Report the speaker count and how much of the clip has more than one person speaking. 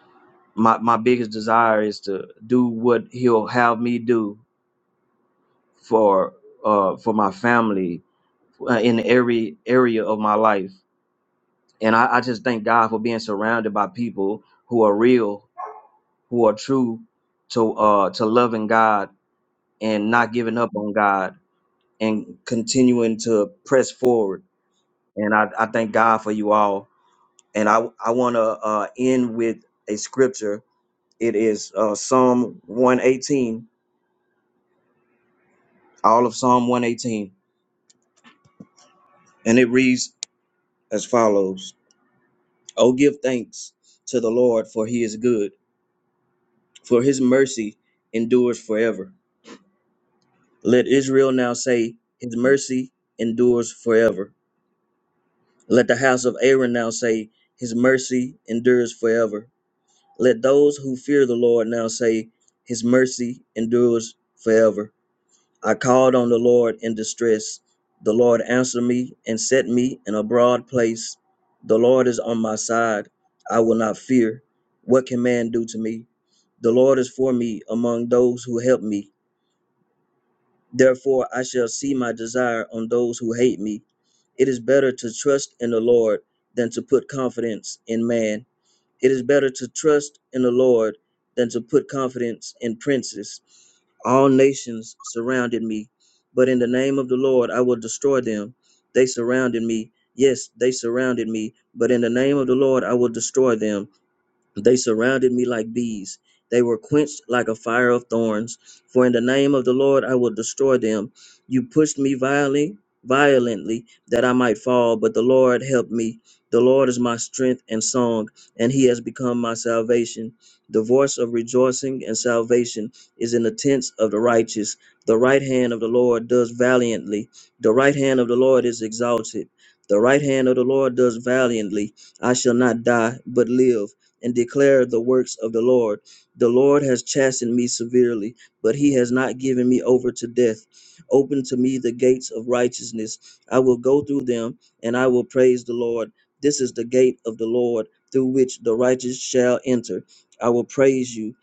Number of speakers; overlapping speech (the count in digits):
1, no overlap